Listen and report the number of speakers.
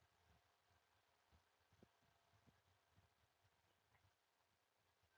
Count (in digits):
0